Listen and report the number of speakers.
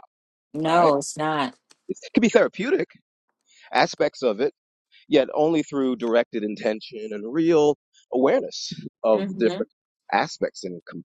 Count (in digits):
2